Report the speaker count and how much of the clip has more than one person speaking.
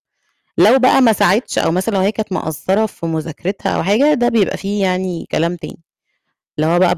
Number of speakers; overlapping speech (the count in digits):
1, no overlap